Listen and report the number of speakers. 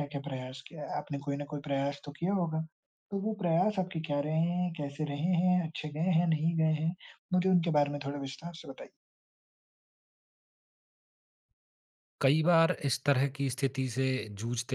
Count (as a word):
two